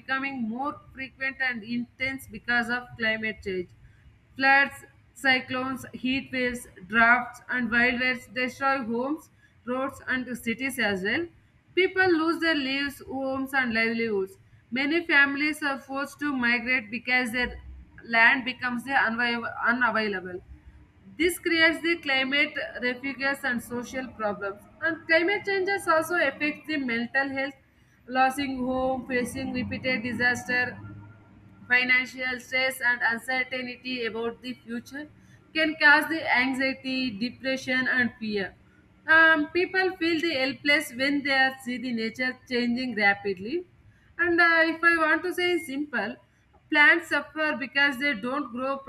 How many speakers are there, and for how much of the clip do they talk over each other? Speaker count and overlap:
one, no overlap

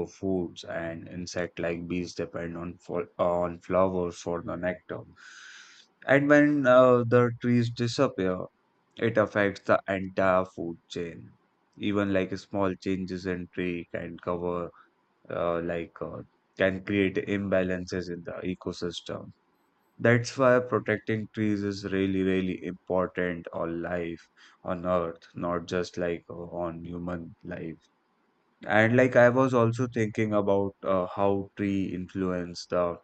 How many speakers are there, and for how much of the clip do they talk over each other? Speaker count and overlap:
one, no overlap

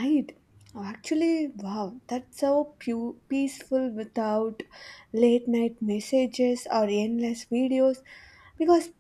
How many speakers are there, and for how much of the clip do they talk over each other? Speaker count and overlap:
one, no overlap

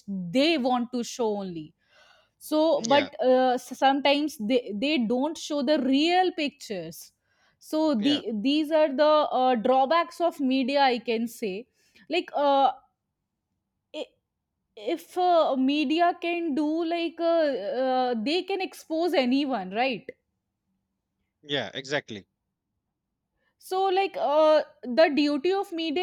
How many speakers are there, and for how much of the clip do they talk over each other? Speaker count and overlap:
two, about 2%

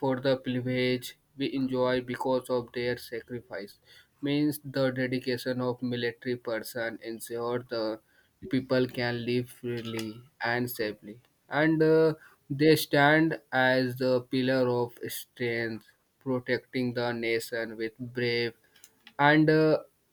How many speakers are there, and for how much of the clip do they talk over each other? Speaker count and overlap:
one, no overlap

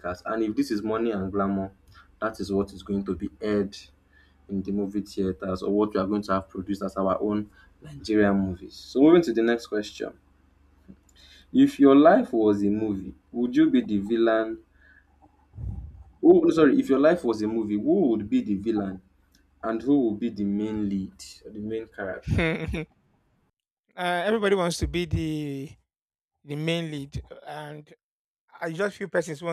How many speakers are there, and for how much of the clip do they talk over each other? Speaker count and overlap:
two, under 1%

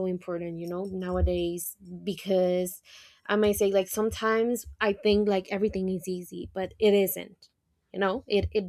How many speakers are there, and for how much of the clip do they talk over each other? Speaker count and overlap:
one, no overlap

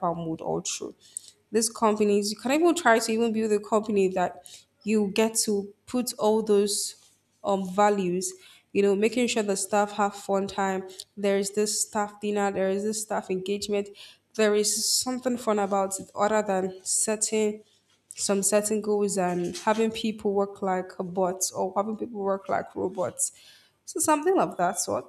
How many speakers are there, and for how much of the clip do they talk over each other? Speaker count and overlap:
one, no overlap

